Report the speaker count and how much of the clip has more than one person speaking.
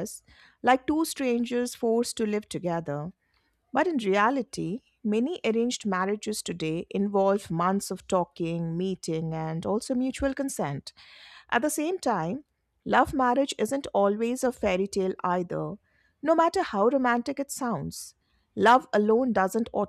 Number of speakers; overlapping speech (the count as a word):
one, no overlap